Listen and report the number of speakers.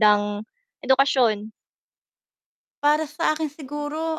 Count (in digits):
2